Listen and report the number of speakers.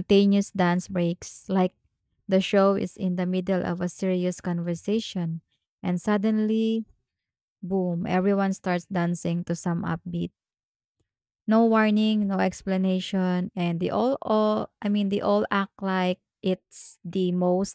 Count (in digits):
1